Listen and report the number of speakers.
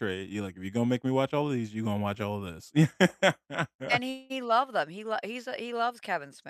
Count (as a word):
two